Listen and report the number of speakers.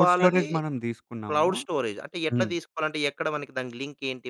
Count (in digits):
2